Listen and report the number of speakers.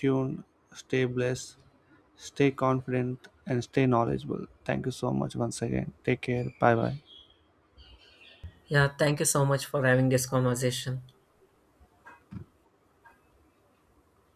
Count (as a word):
two